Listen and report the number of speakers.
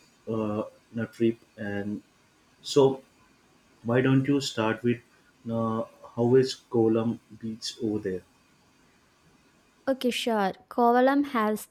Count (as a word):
two